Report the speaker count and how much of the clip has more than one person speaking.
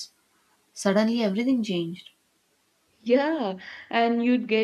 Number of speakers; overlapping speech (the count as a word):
two, no overlap